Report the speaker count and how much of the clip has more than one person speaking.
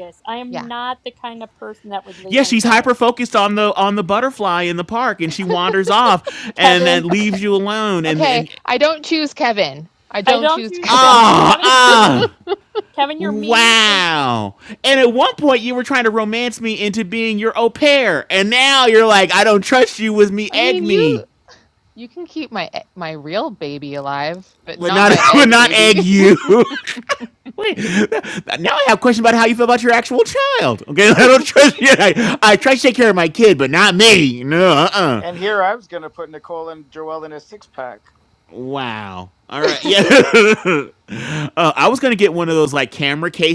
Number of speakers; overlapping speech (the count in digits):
4, about 15%